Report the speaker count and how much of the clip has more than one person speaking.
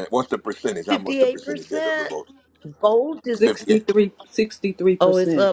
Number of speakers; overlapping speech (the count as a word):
three, about 36%